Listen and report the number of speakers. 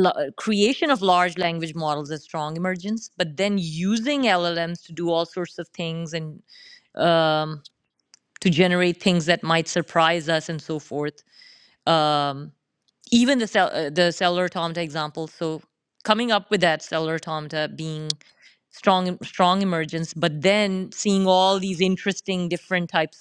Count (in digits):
1